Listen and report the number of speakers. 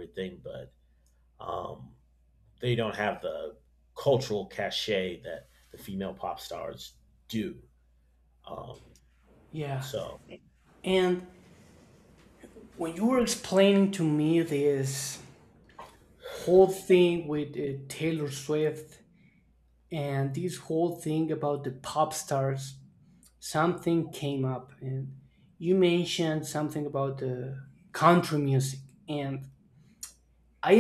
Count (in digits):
2